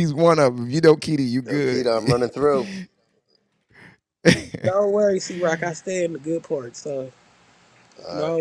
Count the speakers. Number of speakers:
3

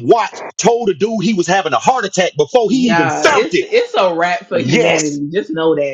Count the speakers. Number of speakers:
2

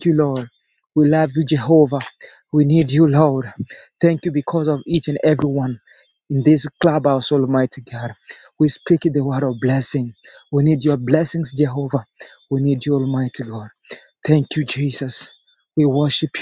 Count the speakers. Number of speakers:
1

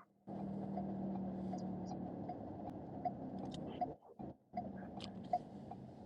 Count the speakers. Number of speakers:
0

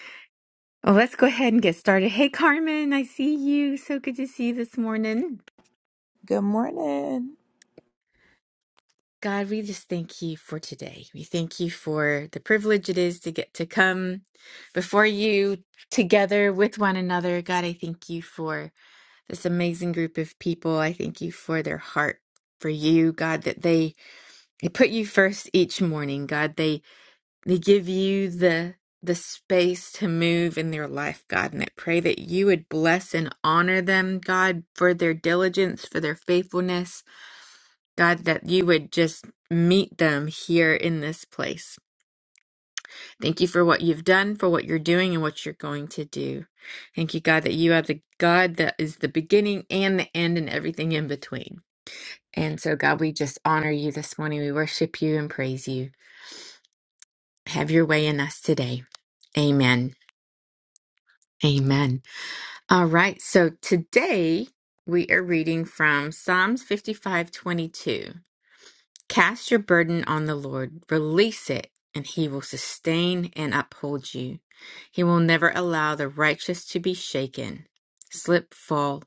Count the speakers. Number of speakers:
2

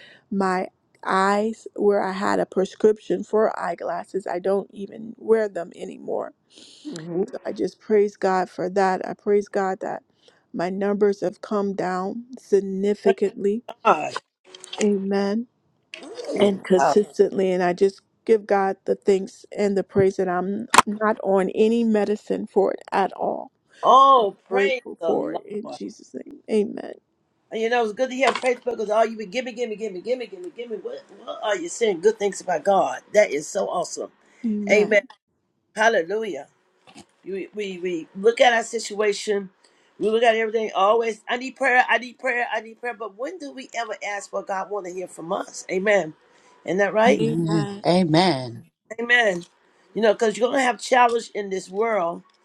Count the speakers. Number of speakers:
3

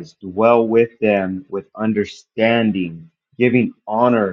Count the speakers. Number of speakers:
1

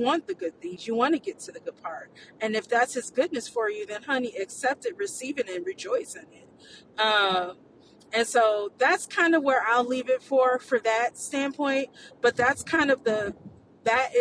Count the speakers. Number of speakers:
1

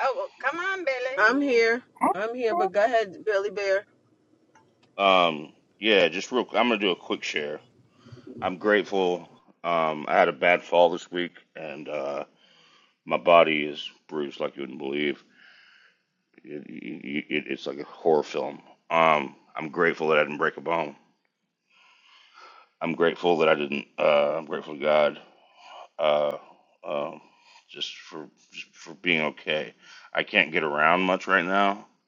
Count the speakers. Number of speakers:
3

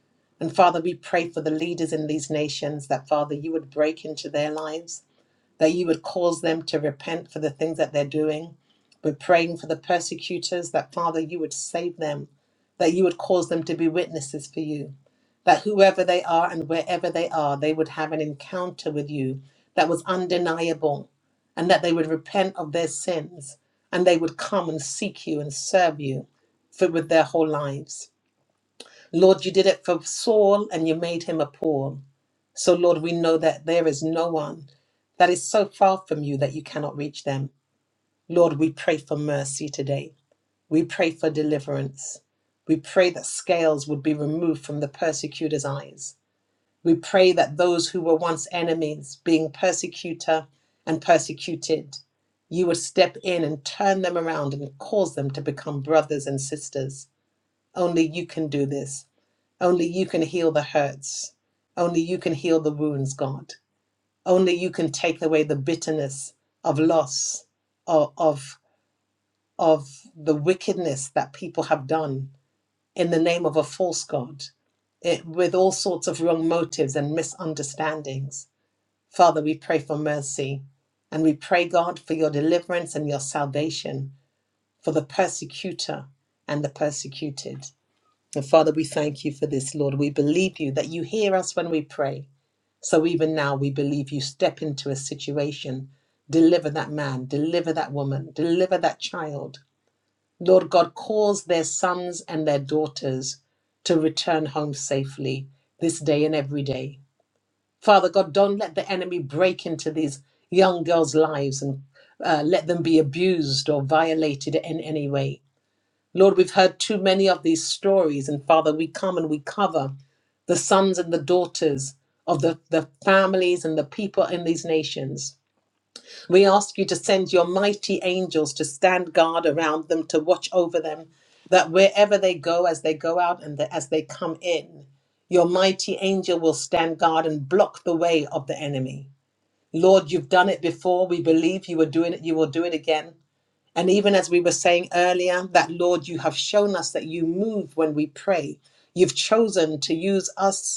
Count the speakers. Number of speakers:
1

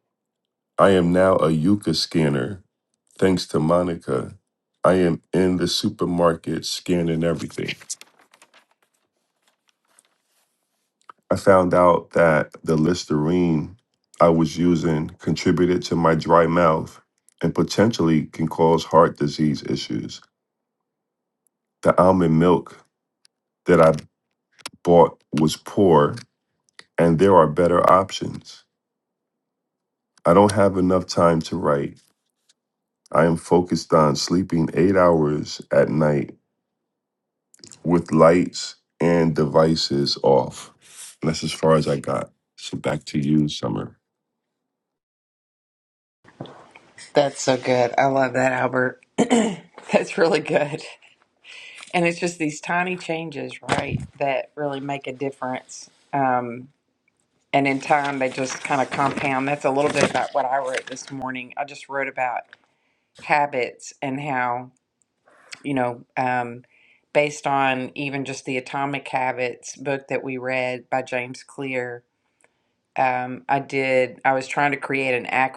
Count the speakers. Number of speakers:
2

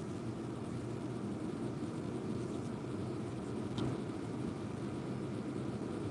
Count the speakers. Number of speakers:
0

